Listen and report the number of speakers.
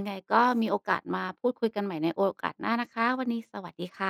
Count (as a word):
one